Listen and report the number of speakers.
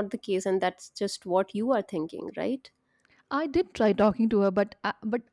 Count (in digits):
2